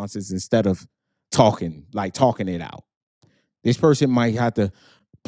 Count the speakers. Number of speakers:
1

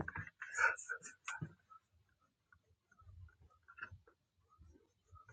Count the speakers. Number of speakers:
0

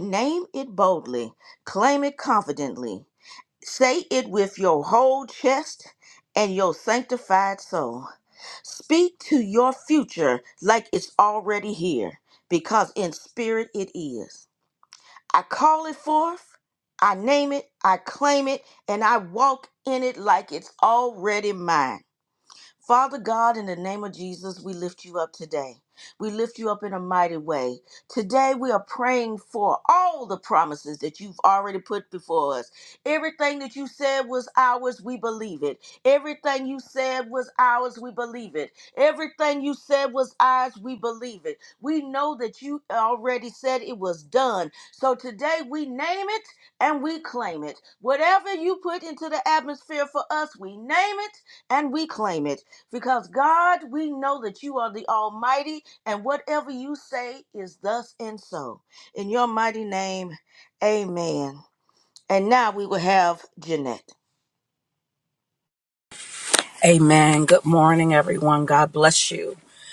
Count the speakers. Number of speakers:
2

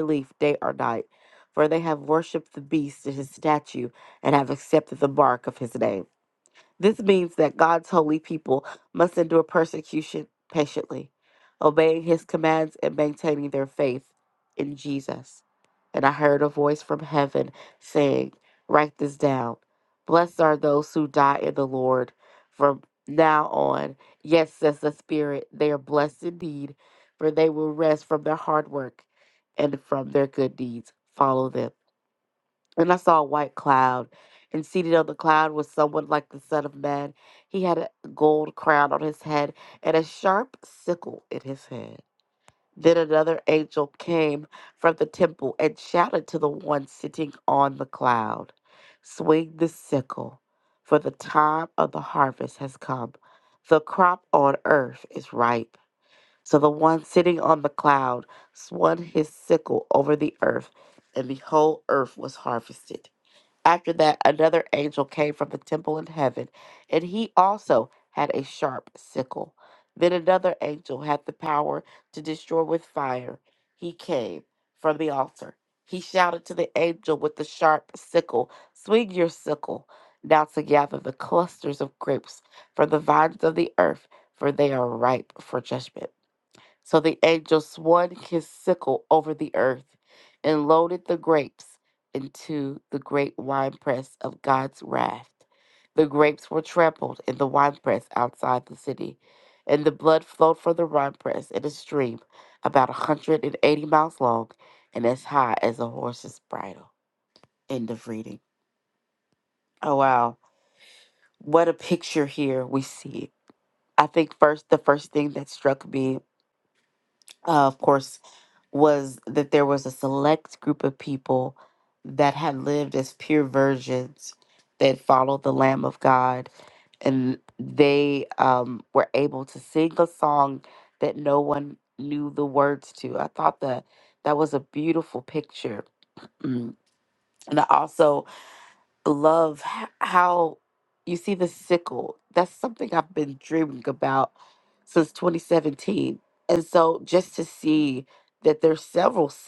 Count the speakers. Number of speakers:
1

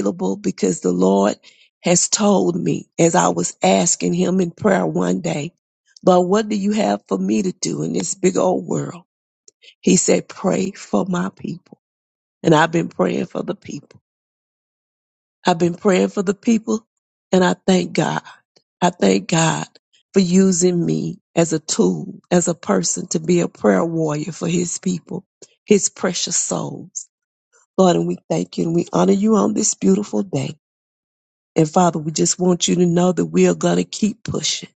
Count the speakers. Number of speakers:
1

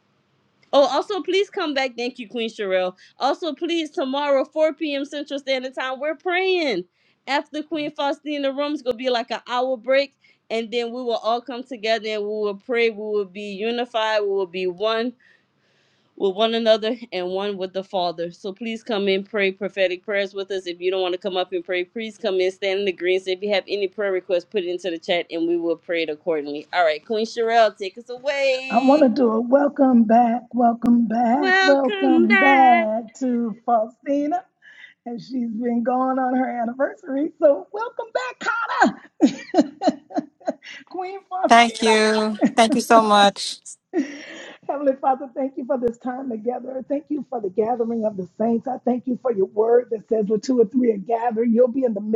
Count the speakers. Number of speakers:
3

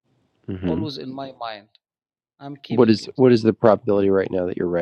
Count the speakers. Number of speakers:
2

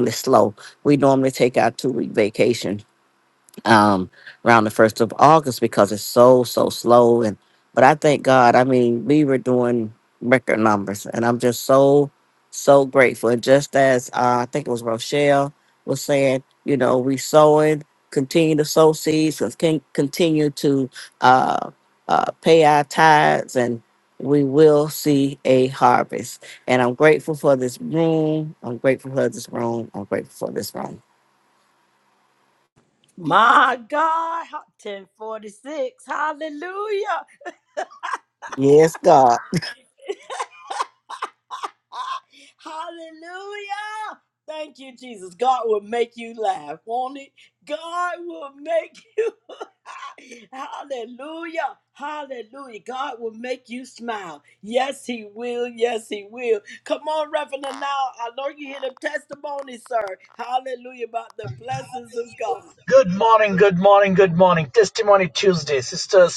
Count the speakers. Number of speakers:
3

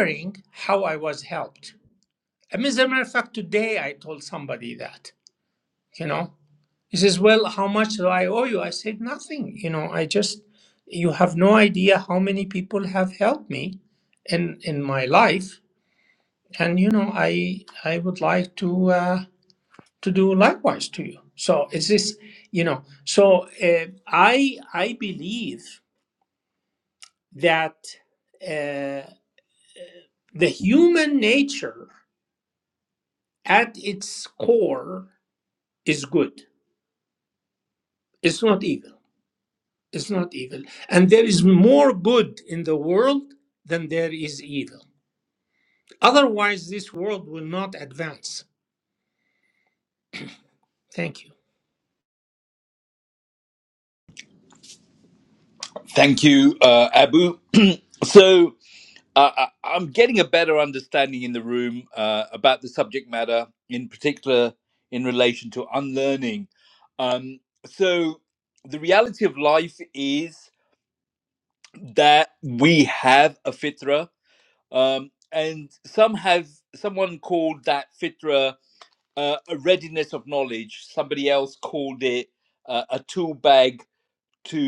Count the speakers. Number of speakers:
2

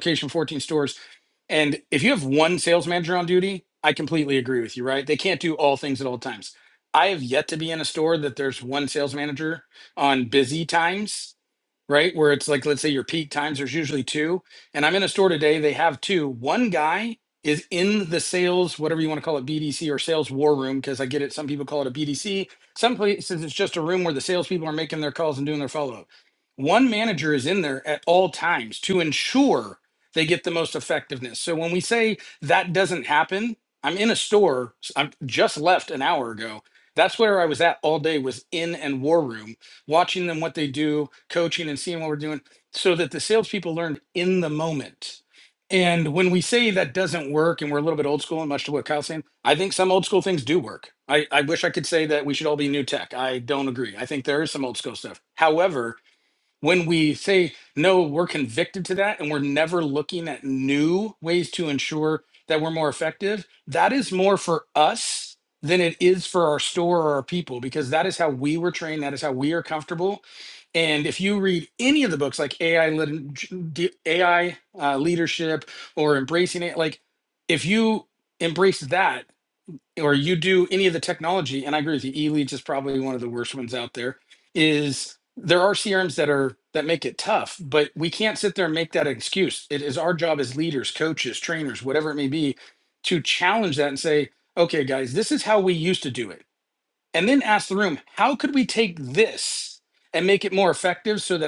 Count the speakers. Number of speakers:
1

